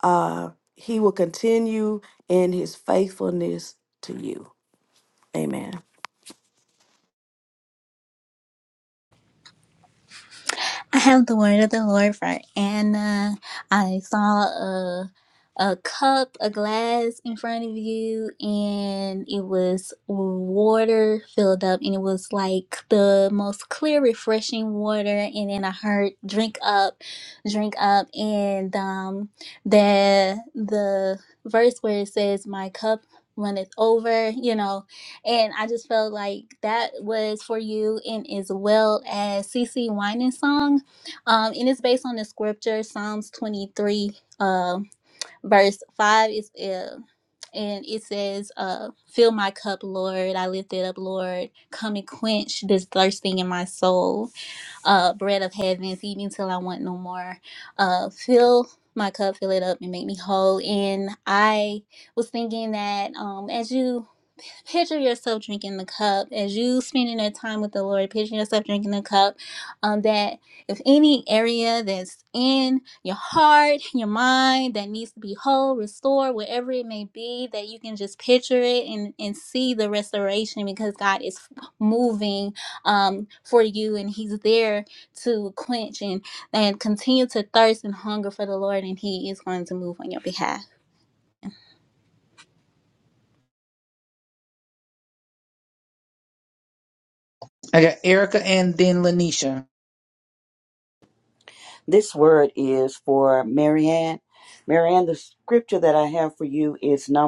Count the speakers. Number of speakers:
four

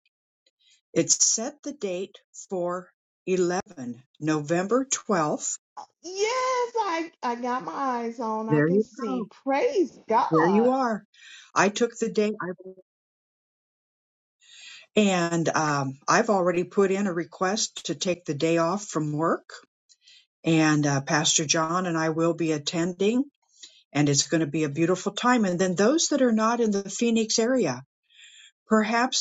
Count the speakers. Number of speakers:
two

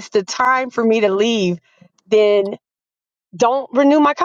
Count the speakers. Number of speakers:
one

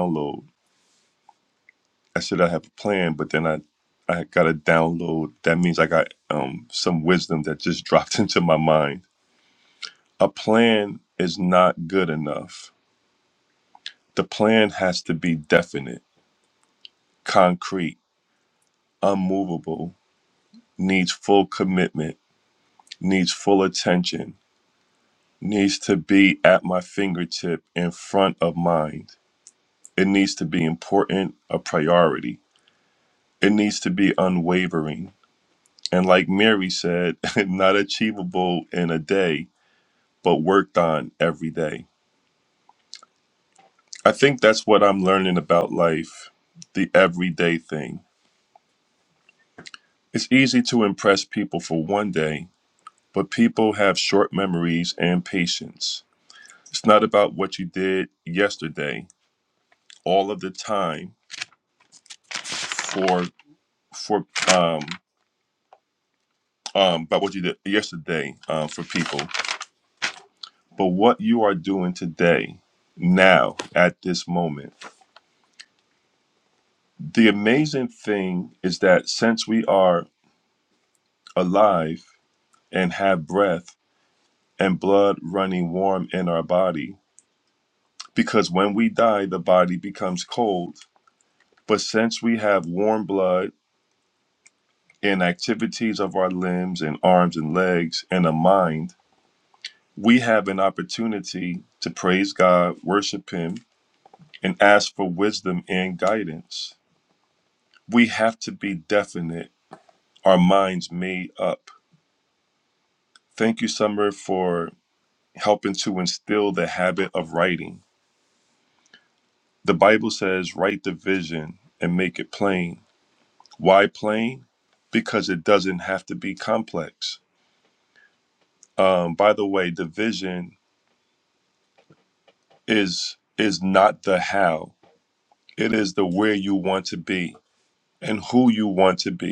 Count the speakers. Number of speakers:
one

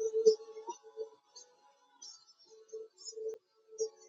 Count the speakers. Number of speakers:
zero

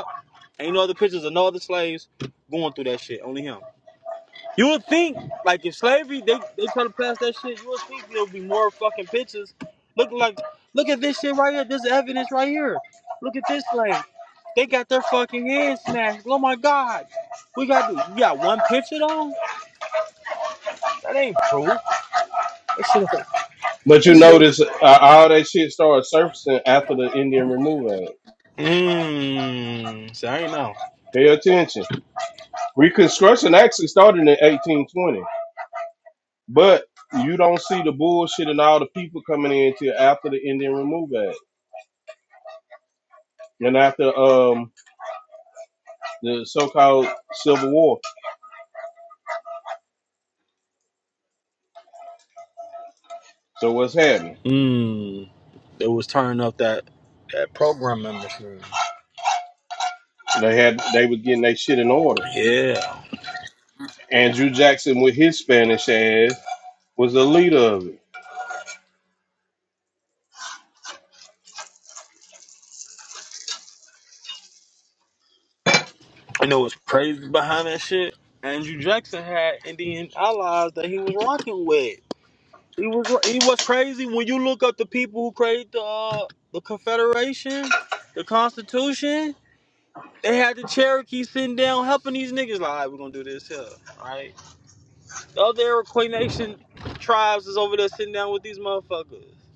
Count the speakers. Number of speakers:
two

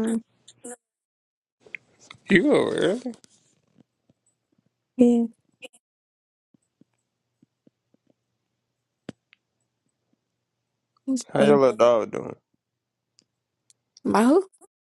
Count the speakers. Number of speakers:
two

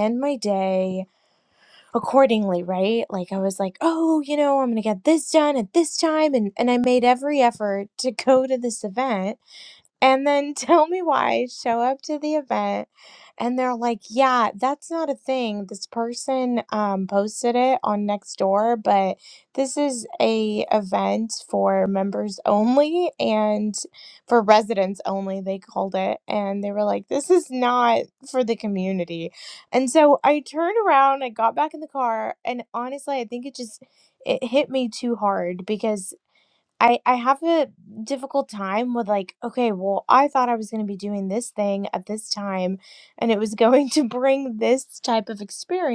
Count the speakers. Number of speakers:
one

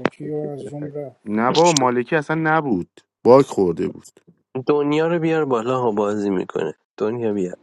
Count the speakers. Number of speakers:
three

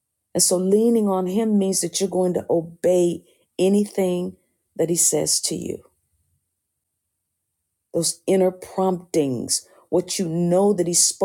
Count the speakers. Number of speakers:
one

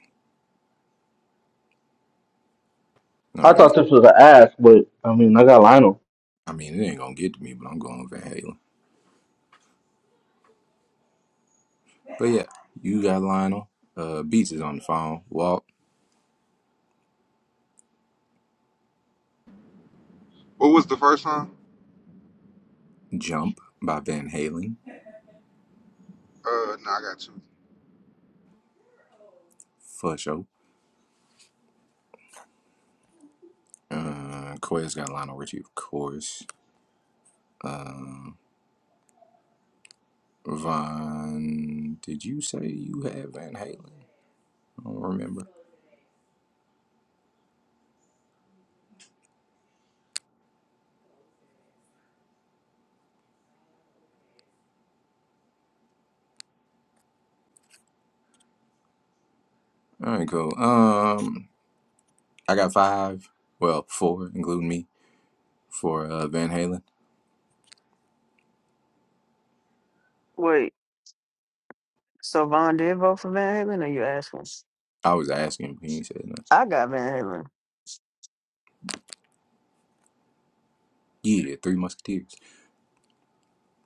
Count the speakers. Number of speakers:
four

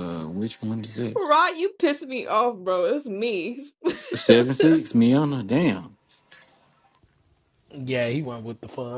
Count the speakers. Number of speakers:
three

